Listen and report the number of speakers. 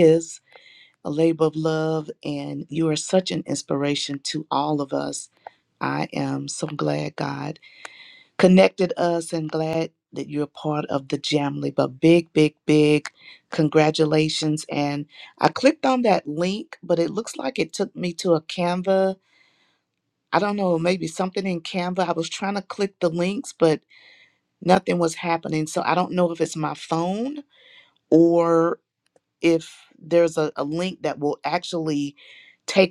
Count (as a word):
one